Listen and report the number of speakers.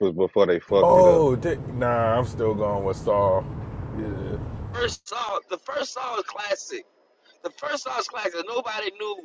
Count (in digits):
3